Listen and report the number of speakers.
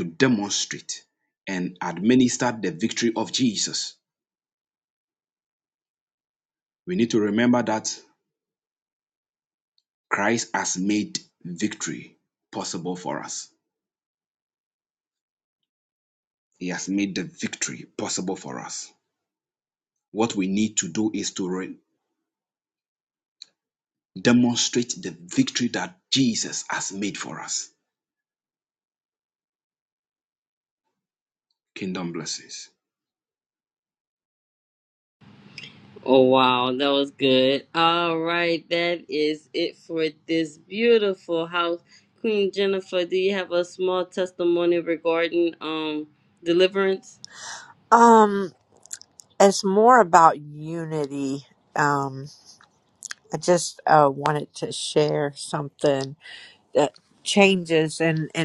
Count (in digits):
3